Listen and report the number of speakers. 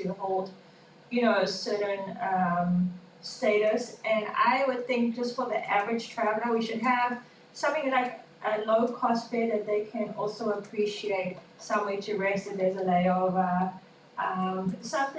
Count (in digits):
1